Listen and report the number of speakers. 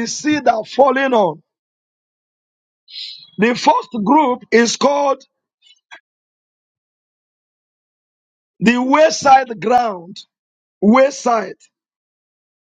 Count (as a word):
one